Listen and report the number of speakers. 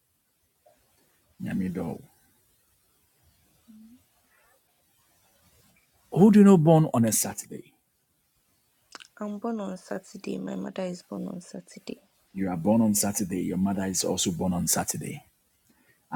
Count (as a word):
two